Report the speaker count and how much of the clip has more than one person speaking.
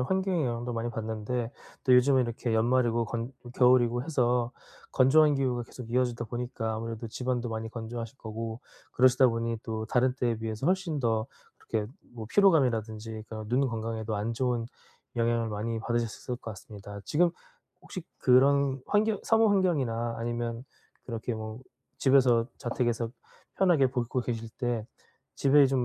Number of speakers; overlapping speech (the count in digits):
1, no overlap